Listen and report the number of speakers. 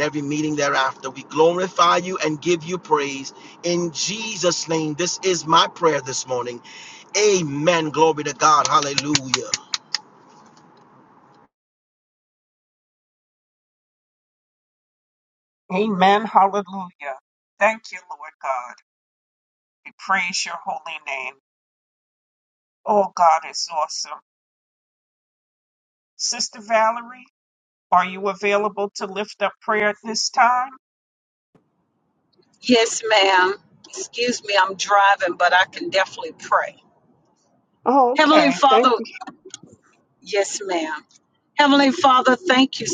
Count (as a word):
three